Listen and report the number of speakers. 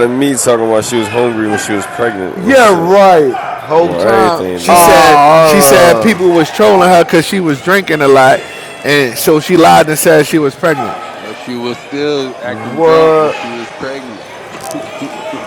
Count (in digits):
4